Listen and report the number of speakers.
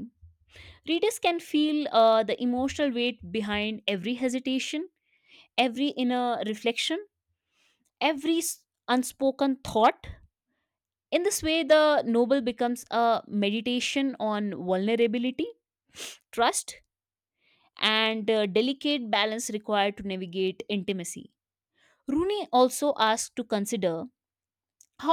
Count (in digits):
1